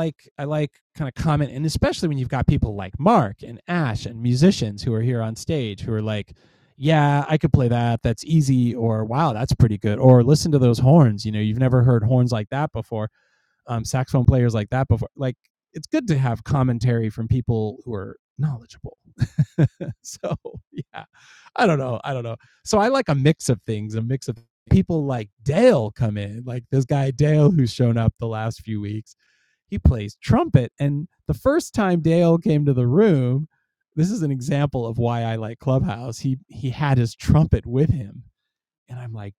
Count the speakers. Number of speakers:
1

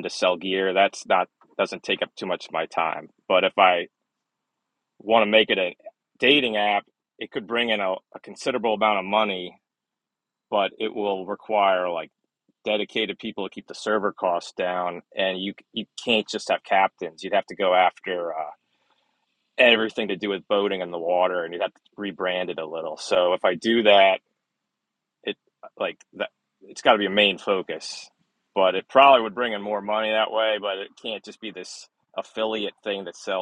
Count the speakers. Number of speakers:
1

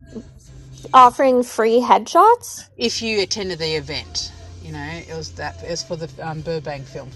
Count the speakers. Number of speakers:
2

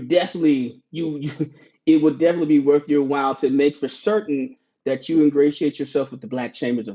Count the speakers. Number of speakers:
1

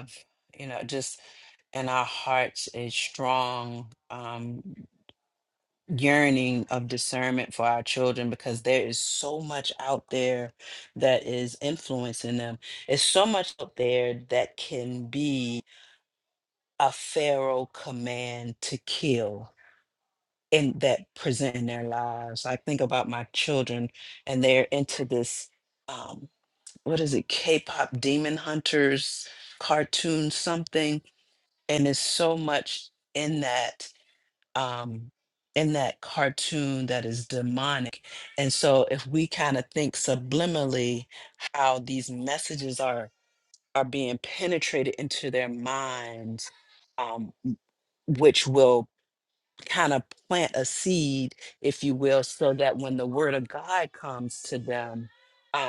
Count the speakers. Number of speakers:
1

